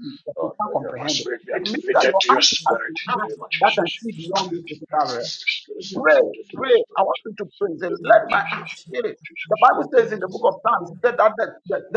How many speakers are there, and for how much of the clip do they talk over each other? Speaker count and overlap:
2, about 63%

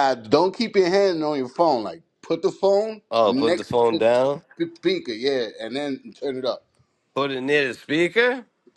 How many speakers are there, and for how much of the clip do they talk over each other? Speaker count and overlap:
2, about 11%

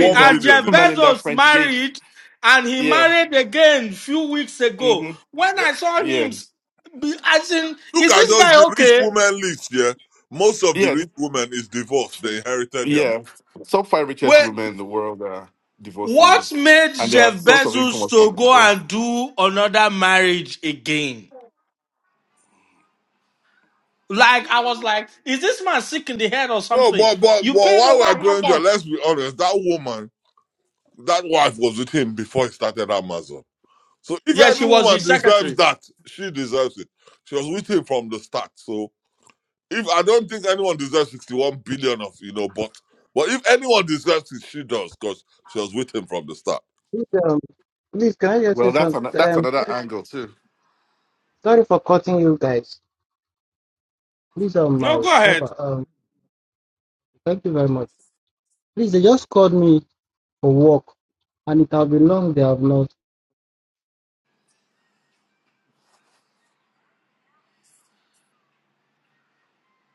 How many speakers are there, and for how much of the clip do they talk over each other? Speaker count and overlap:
4, about 16%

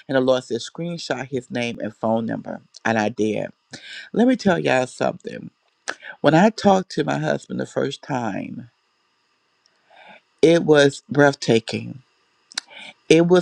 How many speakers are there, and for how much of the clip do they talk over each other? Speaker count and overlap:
1, no overlap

